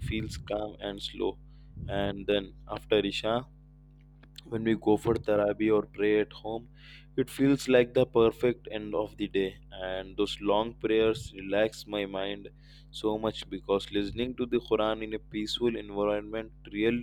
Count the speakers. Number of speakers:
one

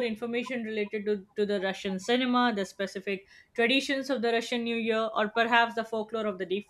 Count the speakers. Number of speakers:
one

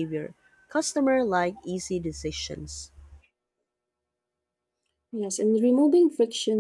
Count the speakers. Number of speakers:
two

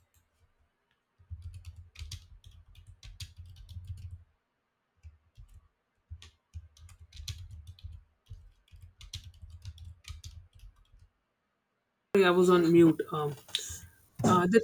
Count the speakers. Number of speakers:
one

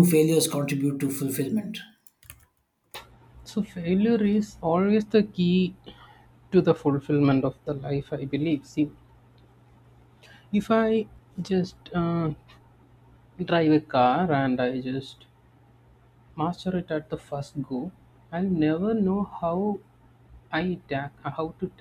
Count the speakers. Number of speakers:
two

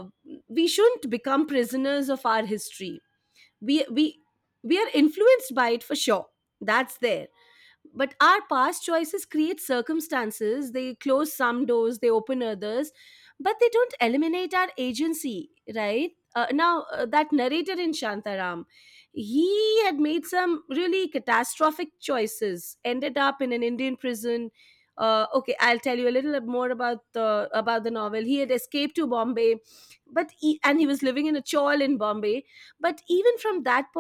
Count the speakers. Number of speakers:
one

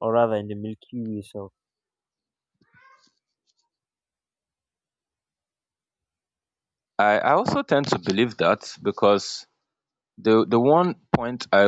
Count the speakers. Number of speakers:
two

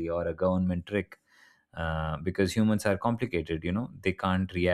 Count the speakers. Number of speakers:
one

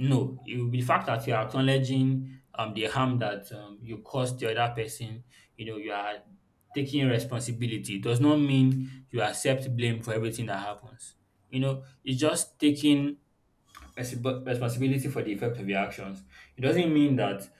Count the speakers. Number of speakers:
one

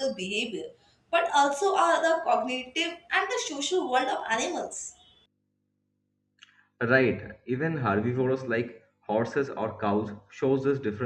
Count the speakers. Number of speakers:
two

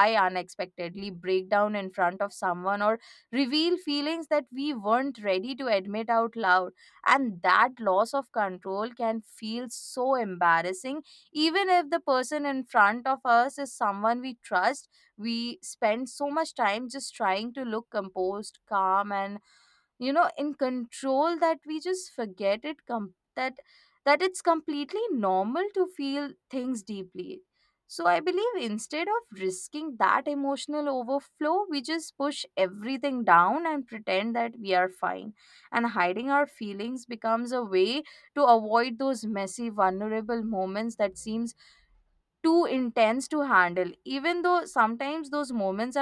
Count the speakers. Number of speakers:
one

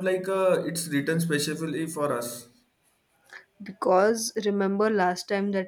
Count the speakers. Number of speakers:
two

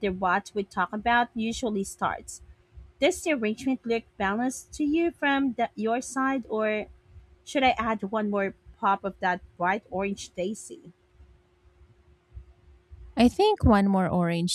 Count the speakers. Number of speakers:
two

